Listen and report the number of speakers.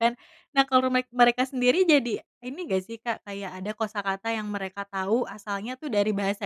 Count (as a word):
one